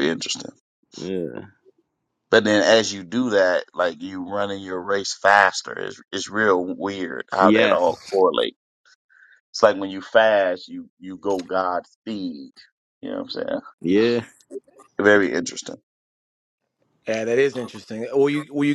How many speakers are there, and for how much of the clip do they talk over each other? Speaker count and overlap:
3, about 6%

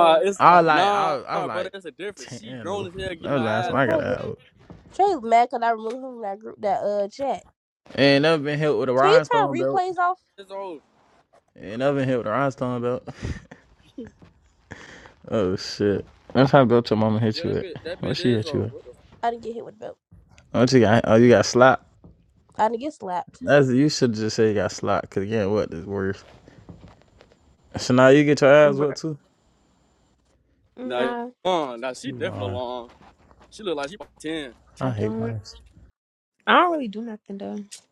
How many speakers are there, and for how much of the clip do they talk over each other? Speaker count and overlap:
4, about 17%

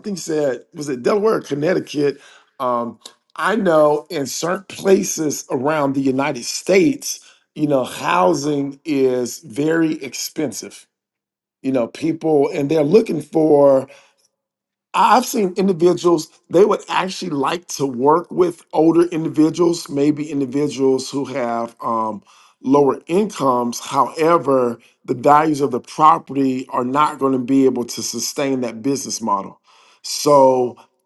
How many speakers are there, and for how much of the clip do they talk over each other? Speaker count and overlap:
1, no overlap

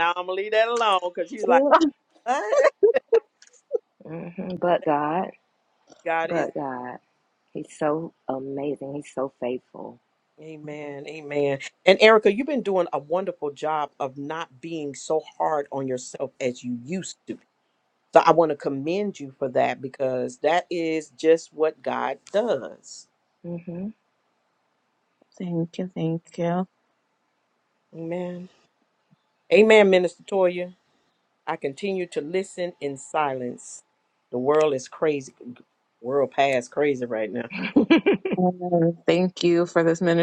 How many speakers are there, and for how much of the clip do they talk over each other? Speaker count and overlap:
3, about 1%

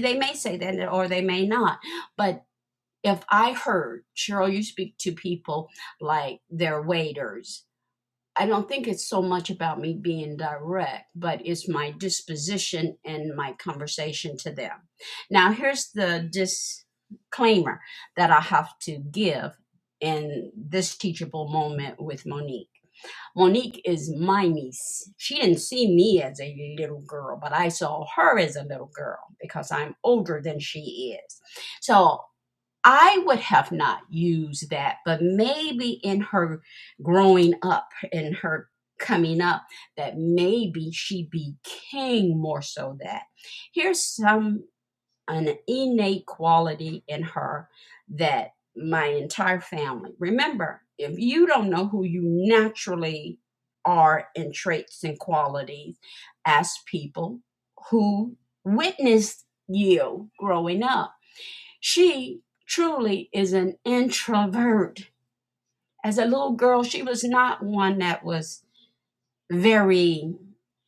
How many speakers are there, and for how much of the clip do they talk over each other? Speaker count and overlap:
1, no overlap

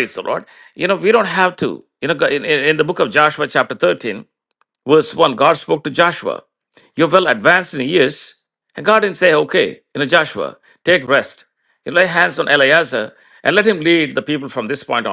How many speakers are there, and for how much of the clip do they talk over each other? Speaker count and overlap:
1, no overlap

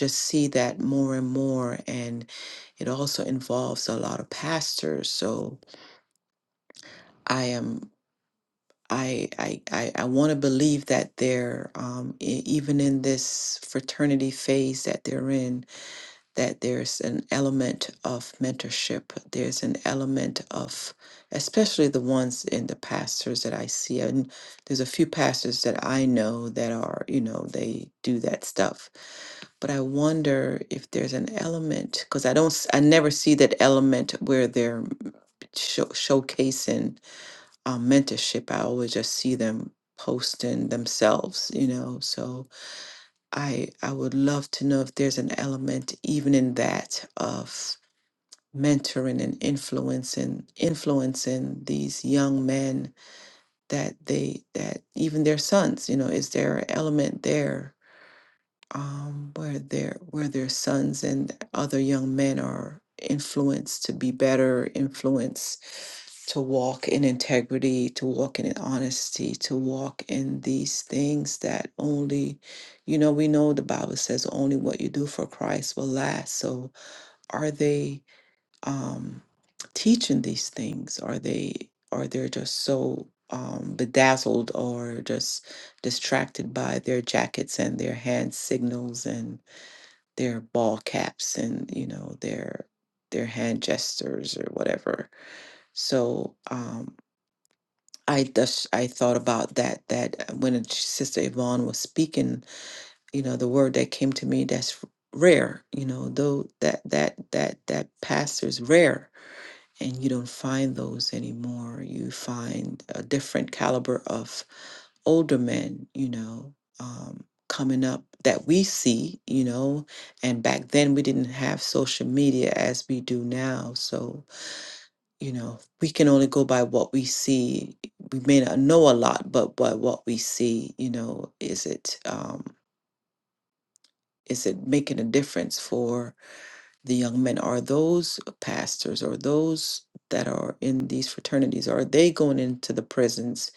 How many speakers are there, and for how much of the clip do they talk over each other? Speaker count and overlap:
1, no overlap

